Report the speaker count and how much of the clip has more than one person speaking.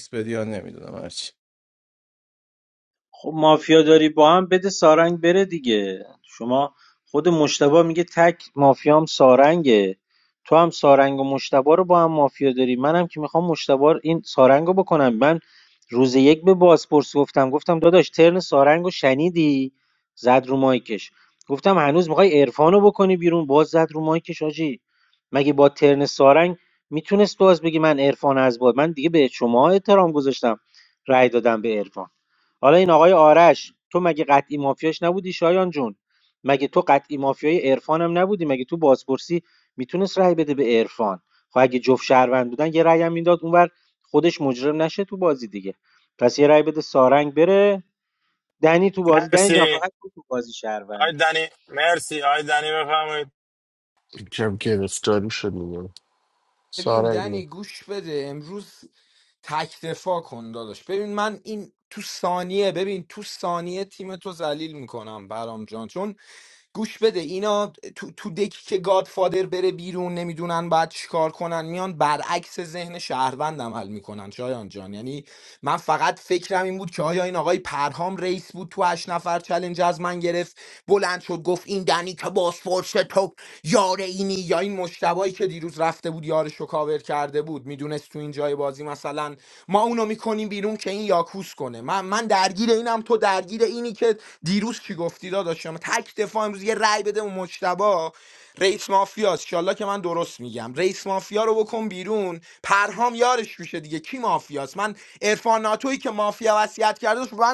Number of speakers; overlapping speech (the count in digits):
5, about 1%